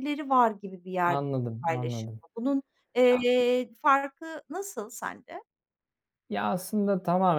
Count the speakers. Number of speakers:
two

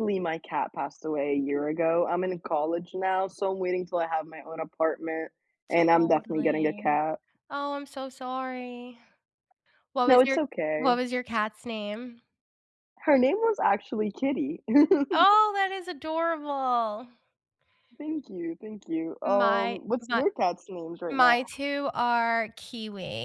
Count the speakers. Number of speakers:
two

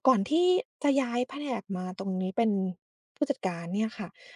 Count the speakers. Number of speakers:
one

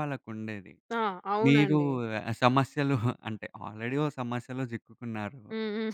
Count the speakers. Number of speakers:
two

